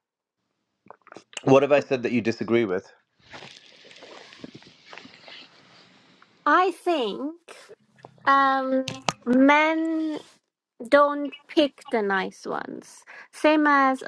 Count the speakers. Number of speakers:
2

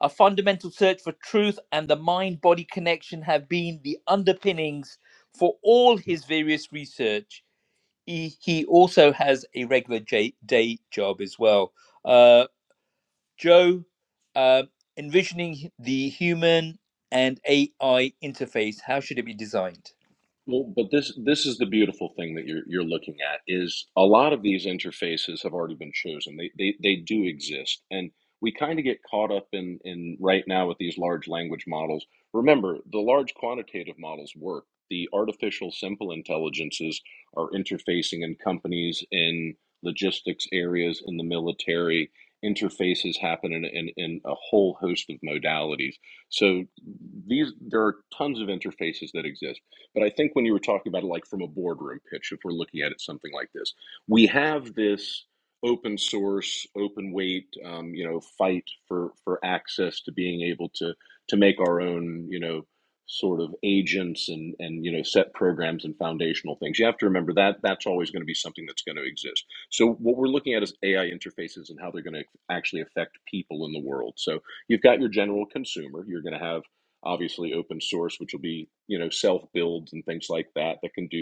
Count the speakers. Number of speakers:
2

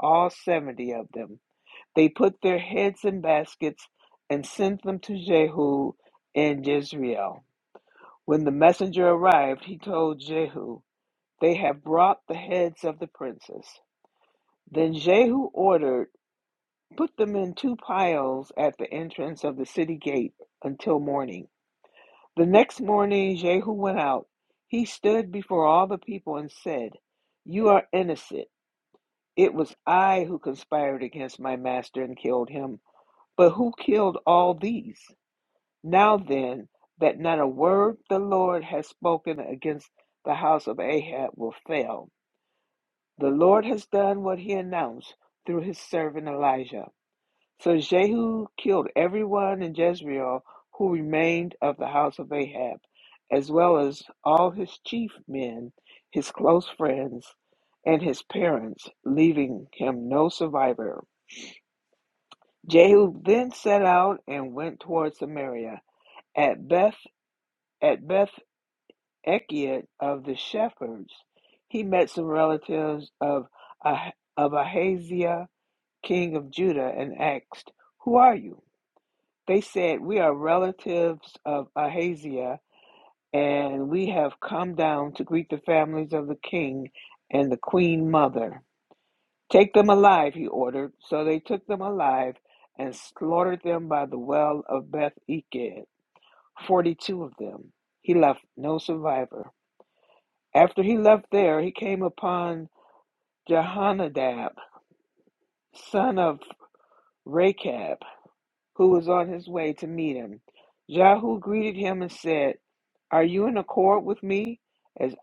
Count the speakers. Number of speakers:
1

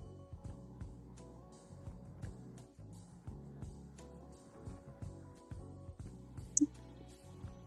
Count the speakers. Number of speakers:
0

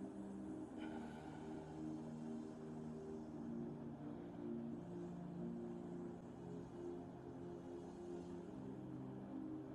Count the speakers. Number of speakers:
0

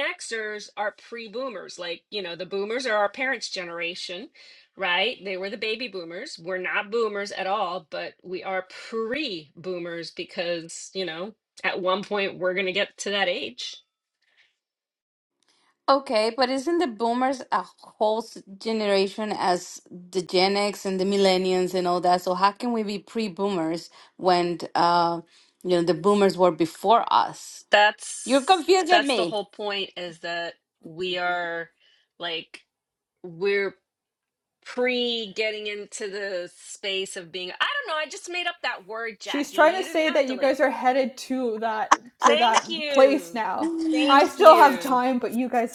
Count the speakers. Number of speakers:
3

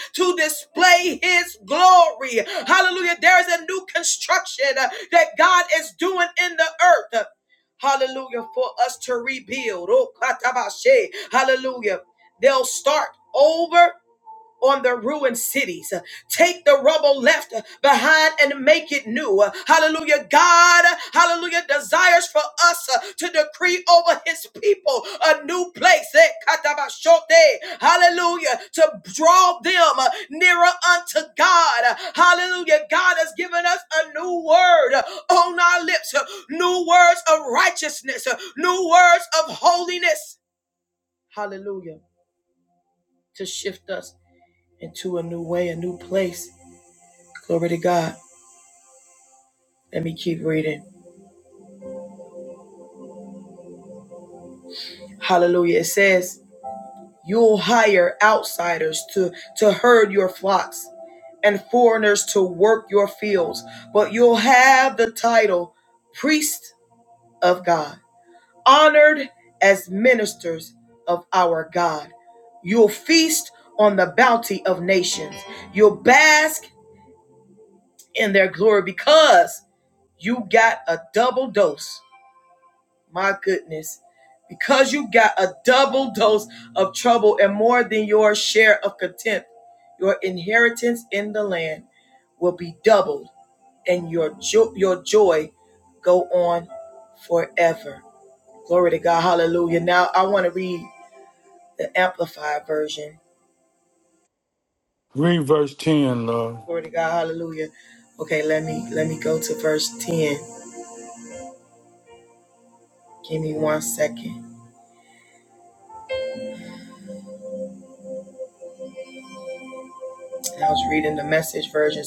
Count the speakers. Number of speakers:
2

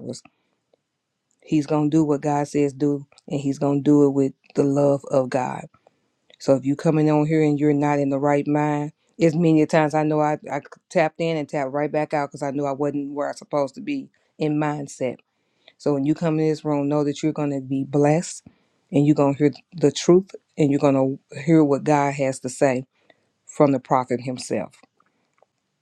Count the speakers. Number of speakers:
1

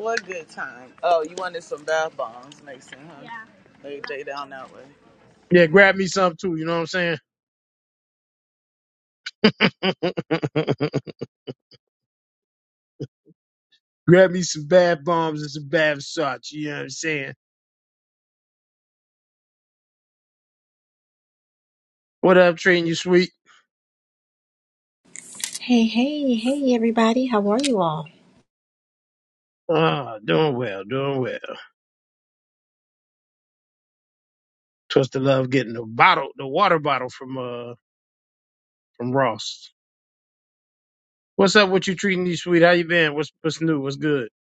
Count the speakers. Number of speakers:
3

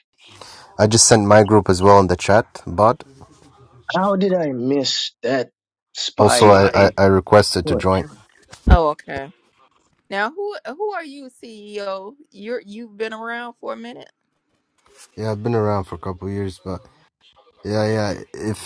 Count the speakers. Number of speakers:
3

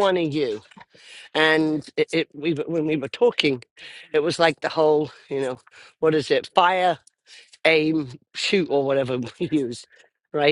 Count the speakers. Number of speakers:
1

